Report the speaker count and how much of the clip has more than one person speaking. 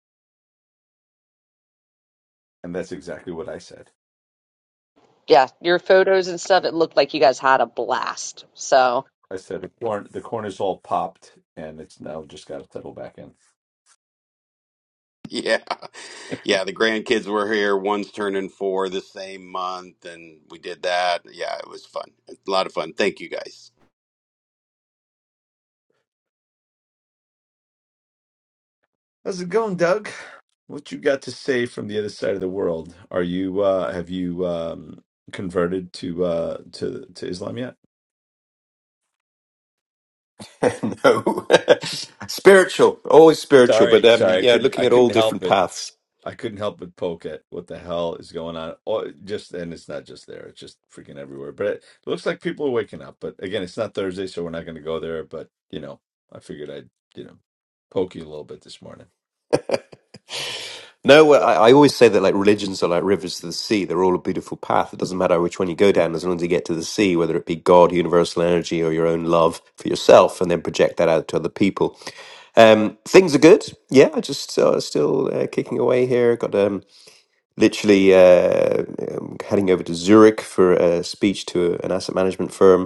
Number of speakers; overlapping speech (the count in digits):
4, about 2%